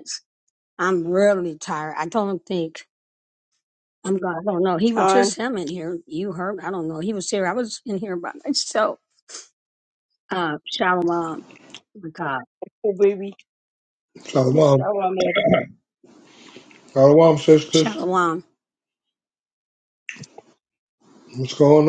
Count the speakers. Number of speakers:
3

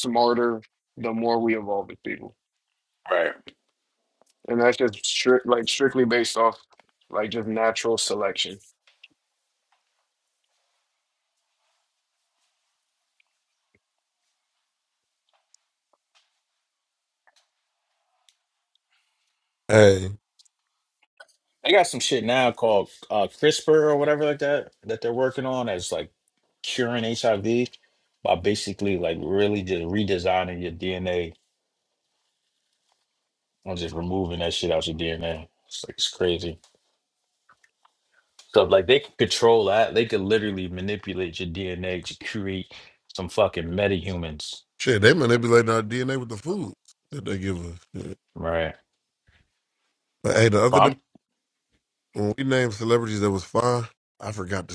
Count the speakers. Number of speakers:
3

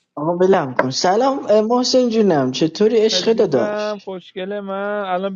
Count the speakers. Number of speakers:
2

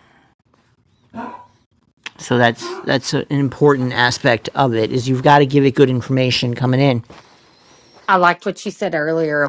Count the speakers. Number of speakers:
2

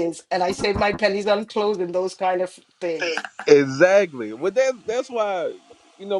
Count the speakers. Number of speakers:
2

